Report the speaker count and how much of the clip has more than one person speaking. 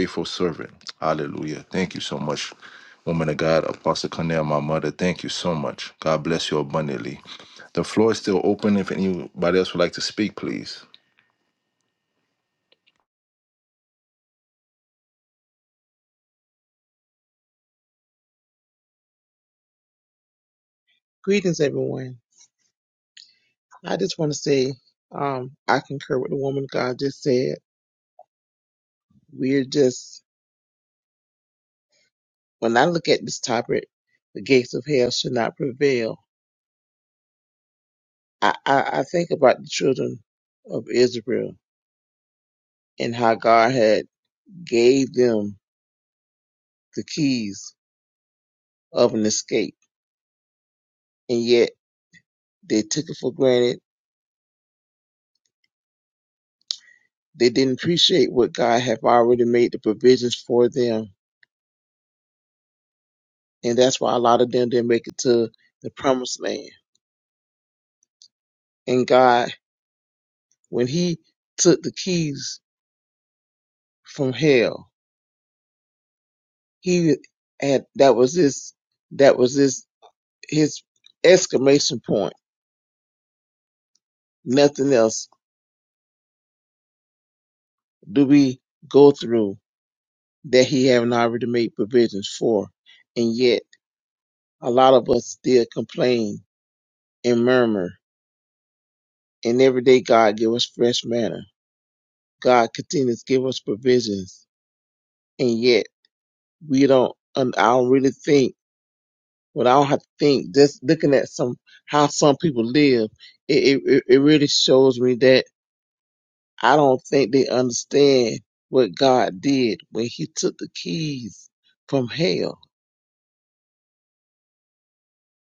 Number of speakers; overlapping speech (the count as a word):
two, no overlap